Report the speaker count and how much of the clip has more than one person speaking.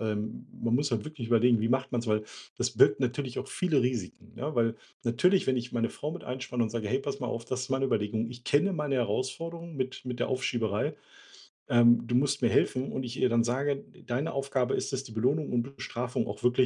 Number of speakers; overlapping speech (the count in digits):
1, no overlap